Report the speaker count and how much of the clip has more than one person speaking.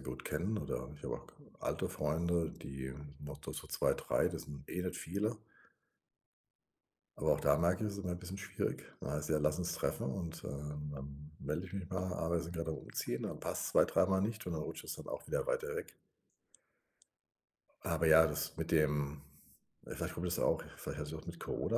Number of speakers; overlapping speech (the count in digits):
1, no overlap